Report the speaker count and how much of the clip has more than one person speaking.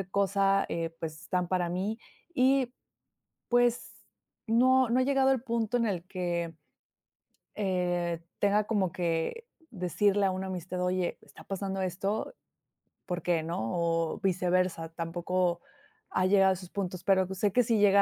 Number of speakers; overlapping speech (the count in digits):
1, no overlap